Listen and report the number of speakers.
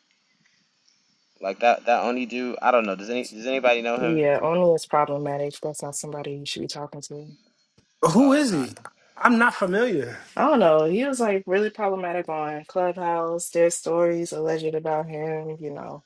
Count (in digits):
3